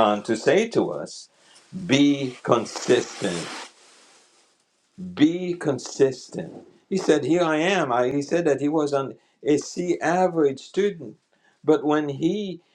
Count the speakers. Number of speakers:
1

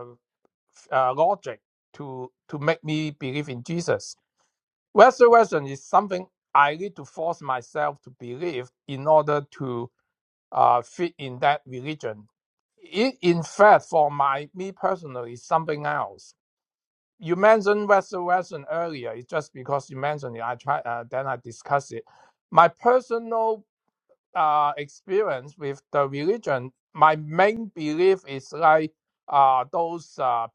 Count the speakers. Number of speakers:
1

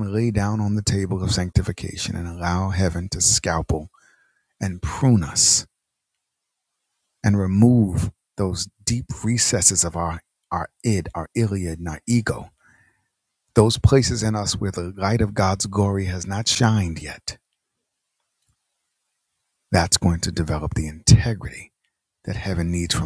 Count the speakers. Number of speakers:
1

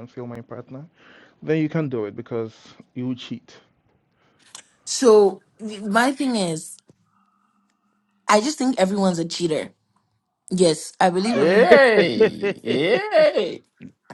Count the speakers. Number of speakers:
3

